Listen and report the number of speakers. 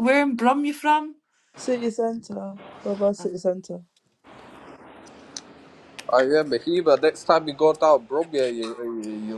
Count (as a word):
three